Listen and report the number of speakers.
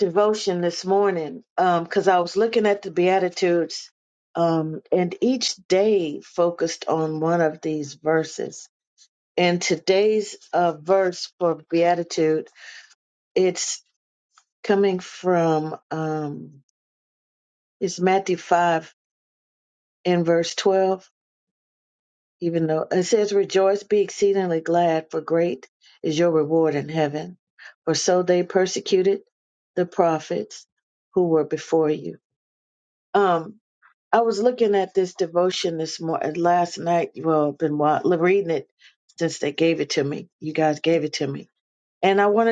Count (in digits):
1